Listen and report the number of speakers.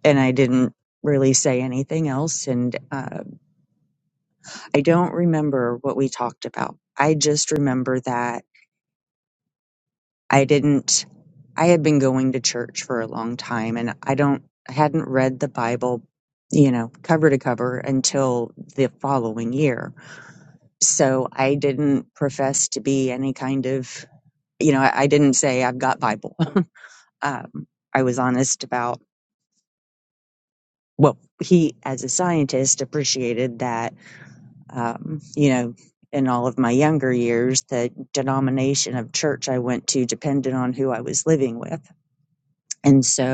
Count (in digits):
1